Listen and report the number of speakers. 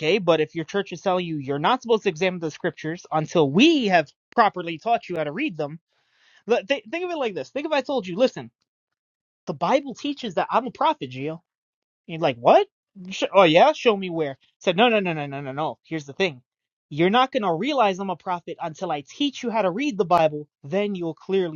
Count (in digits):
1